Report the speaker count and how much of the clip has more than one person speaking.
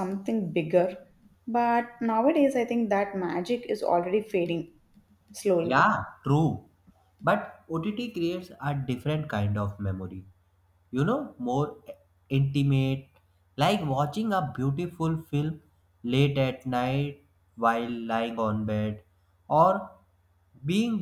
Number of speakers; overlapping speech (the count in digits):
2, about 1%